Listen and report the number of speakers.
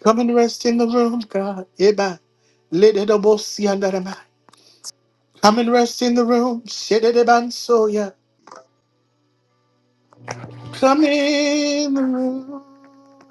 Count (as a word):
one